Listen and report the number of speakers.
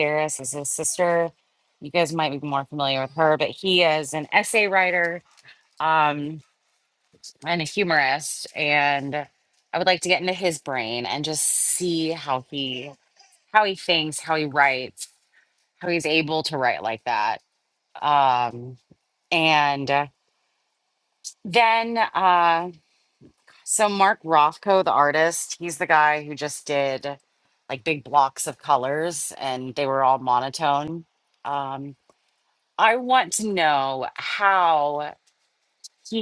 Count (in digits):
1